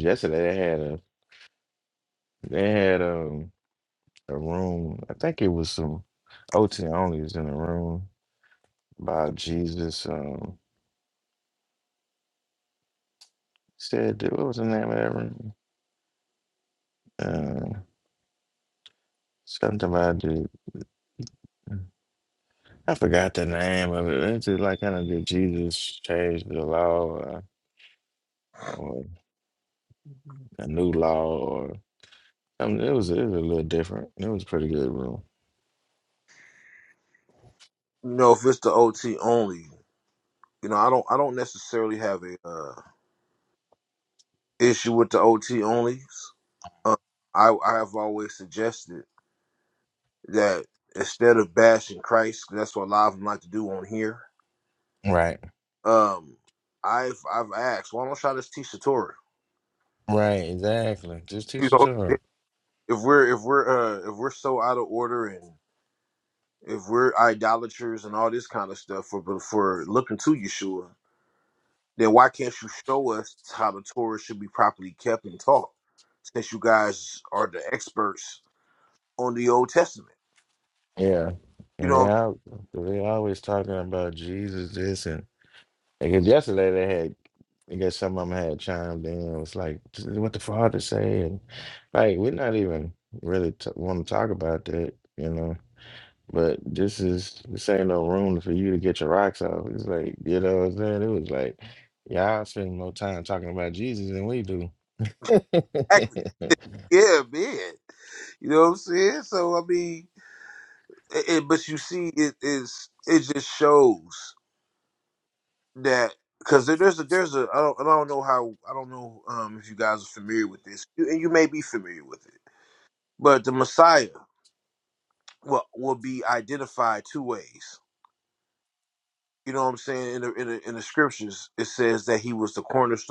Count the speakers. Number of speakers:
two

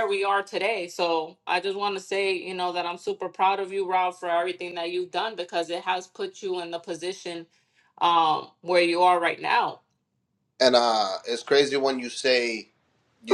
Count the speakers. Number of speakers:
two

